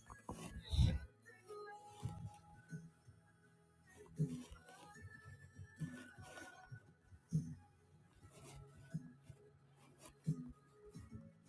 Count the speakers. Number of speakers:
zero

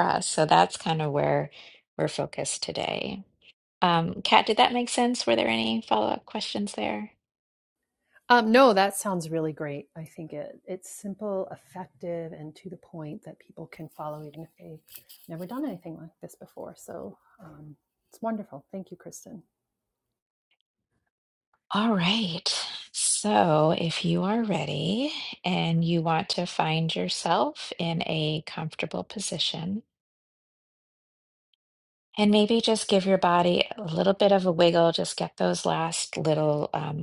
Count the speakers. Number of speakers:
two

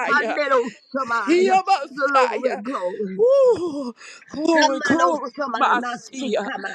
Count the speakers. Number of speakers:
two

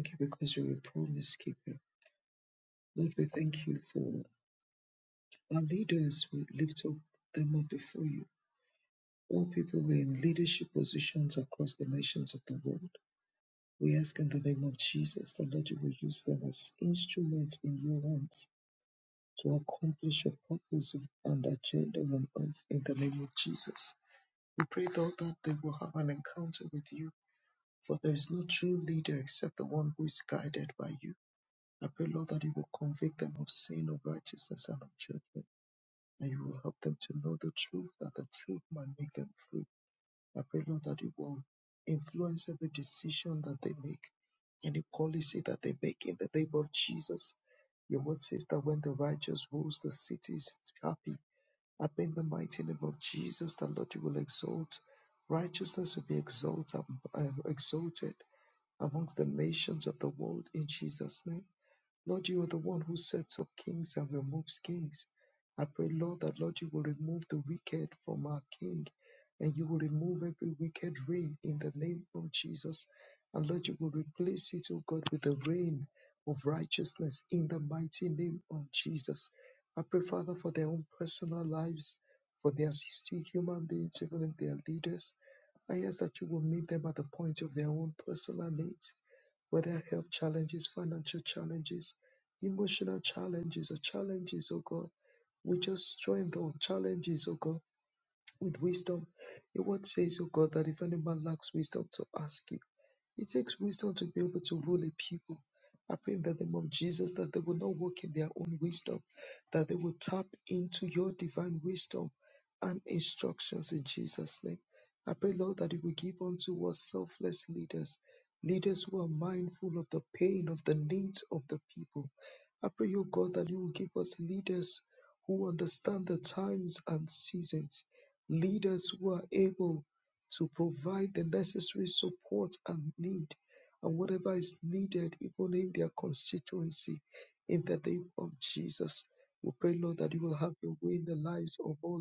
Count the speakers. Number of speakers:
one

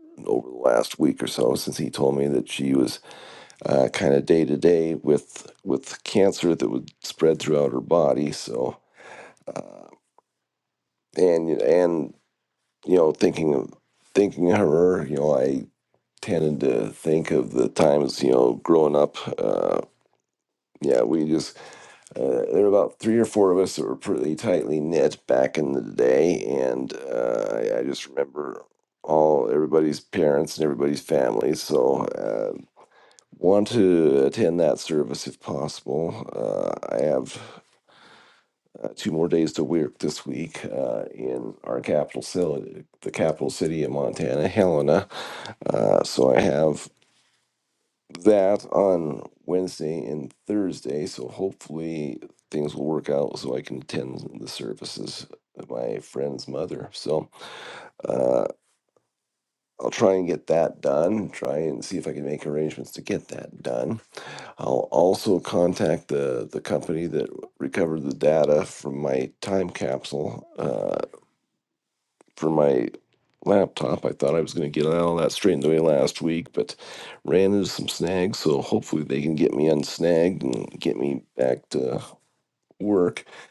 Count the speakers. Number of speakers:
one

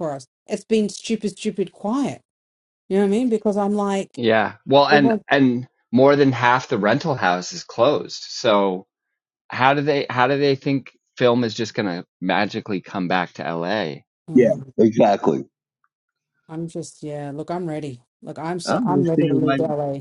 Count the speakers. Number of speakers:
three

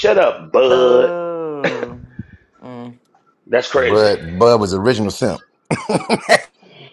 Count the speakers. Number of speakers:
three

